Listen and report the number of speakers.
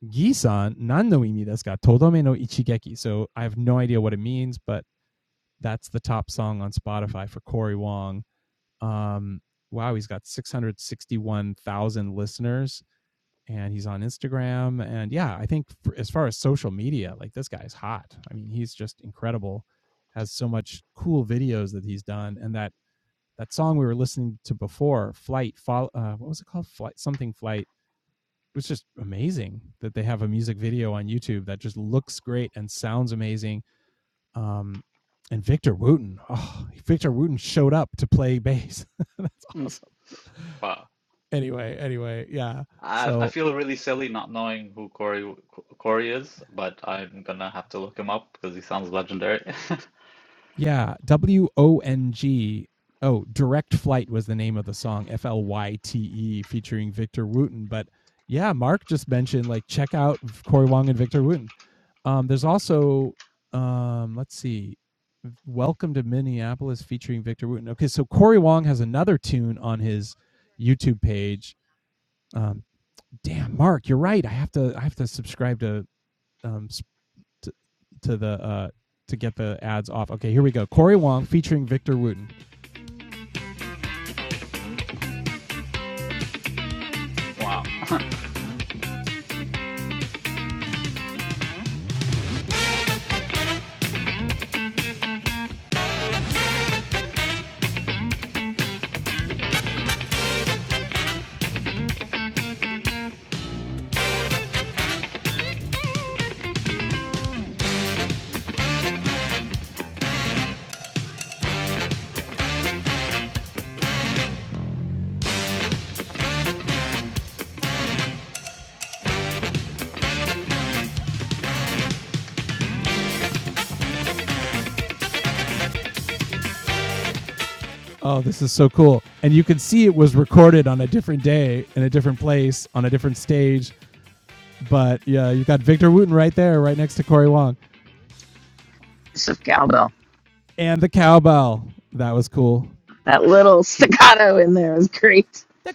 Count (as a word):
three